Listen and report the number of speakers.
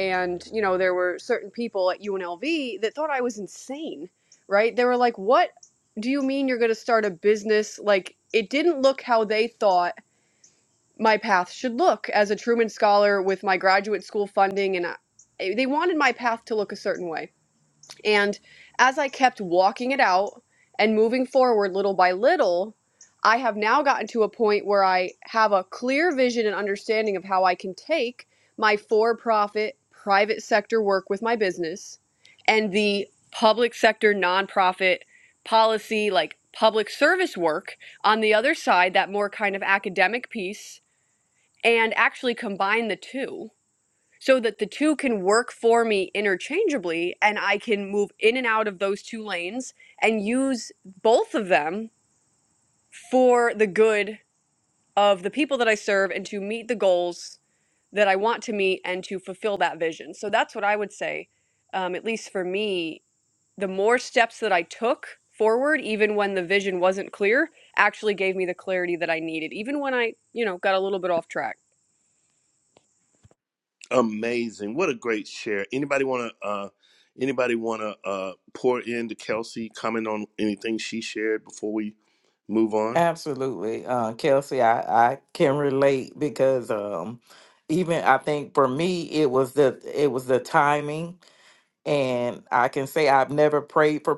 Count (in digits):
3